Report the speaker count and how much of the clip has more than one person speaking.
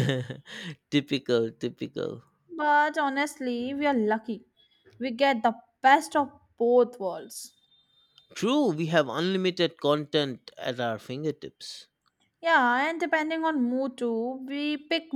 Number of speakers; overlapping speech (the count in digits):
2, no overlap